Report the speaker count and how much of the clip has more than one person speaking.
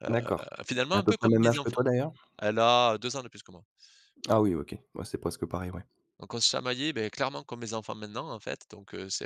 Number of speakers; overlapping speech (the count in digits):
2, about 11%